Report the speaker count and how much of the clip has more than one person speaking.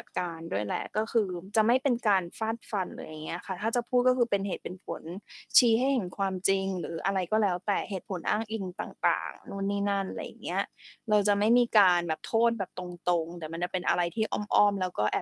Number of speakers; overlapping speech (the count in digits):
1, no overlap